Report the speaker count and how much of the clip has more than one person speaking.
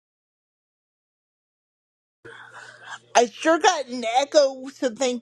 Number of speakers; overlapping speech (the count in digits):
1, no overlap